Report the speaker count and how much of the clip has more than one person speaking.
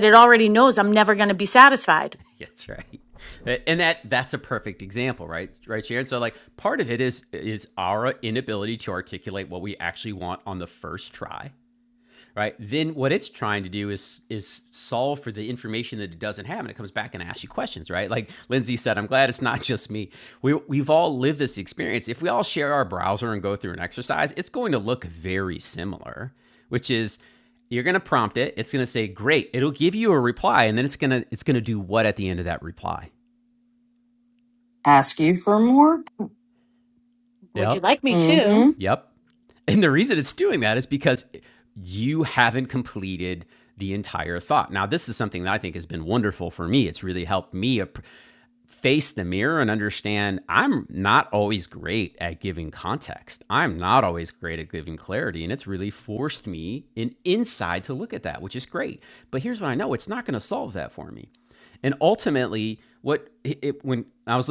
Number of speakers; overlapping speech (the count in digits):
3, about 1%